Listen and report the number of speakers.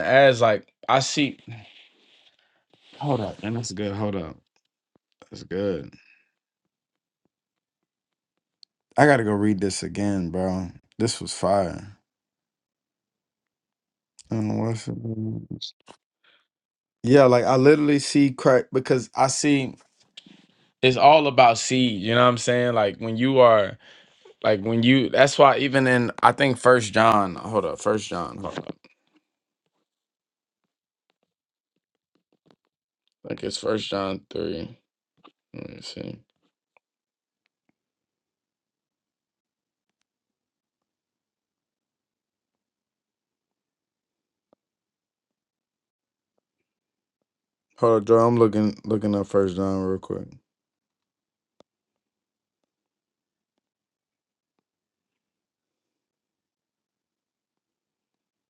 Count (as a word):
one